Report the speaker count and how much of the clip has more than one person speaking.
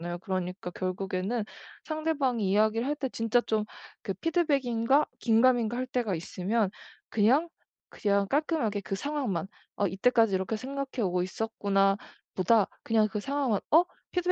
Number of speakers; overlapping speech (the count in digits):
1, no overlap